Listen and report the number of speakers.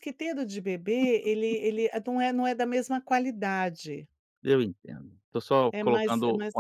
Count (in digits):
2